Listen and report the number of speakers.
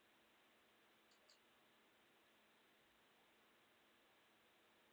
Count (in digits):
0